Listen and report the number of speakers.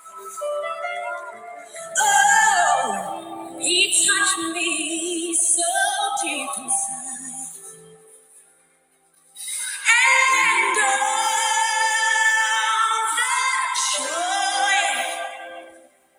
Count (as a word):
one